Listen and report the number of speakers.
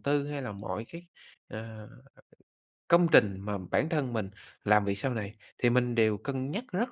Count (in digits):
1